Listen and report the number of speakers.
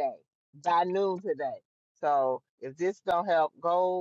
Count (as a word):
one